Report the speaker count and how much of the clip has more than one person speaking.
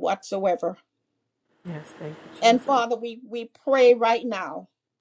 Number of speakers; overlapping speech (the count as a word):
two, about 8%